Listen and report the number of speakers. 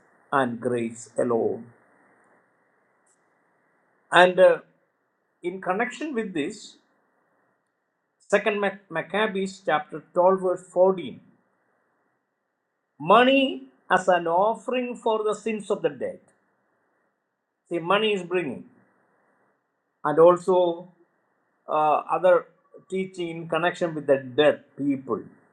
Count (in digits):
1